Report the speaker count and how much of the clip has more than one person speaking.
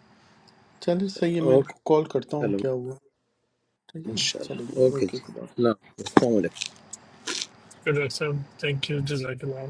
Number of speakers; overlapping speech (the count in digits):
3, about 18%